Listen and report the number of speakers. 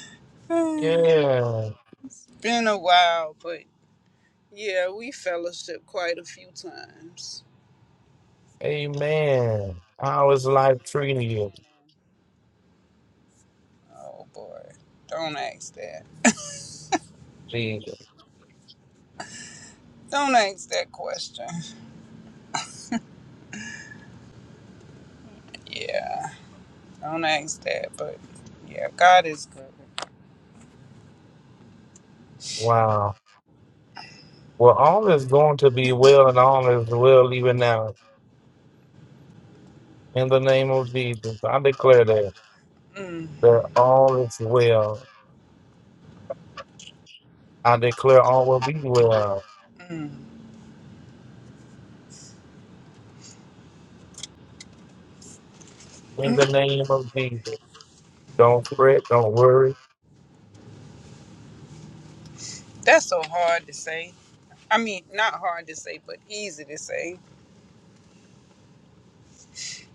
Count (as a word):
two